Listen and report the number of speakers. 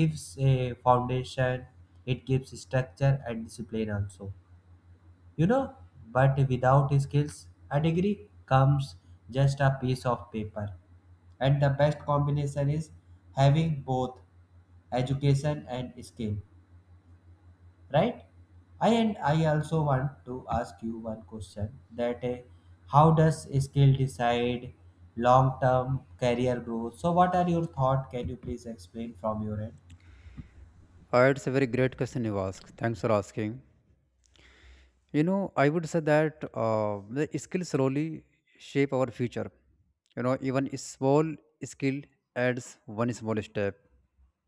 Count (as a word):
two